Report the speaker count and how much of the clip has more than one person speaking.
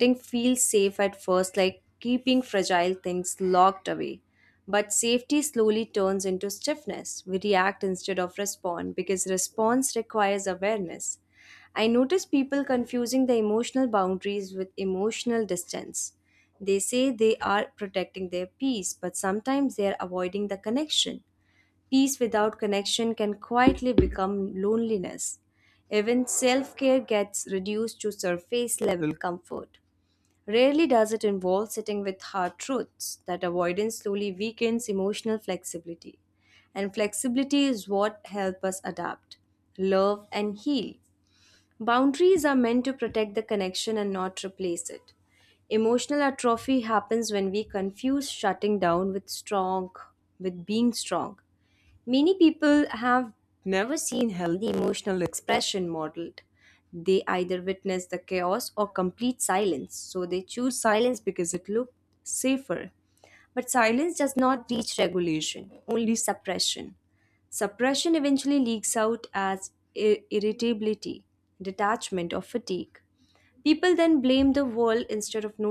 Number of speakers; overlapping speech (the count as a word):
one, no overlap